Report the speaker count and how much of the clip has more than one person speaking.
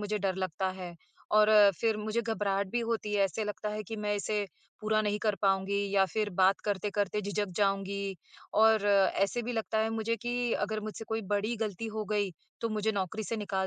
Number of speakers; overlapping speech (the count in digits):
1, no overlap